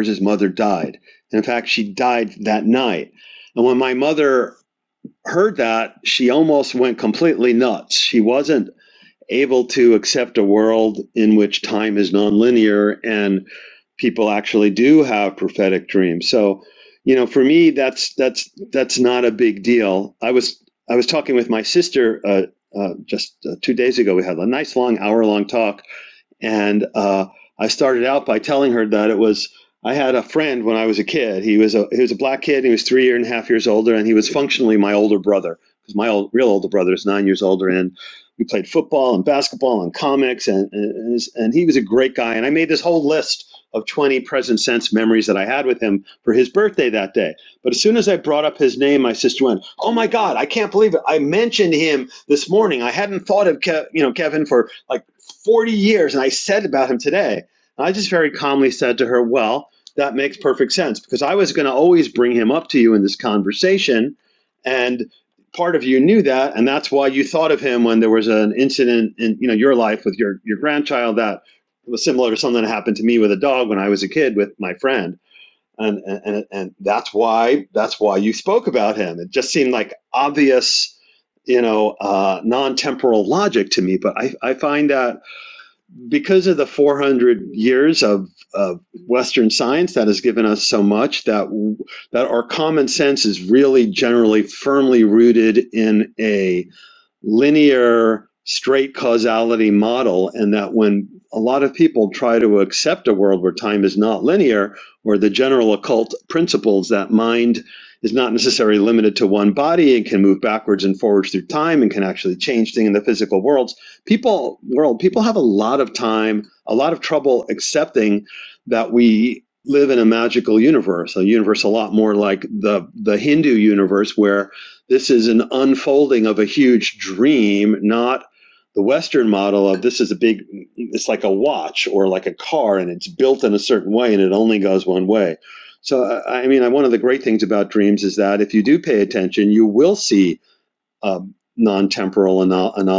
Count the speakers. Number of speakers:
one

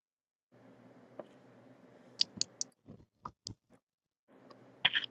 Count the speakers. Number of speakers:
zero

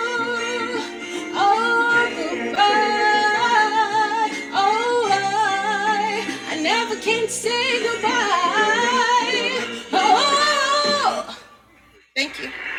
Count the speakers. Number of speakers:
one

